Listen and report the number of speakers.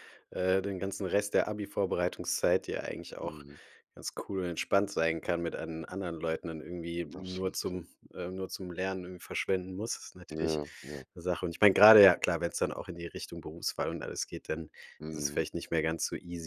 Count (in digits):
2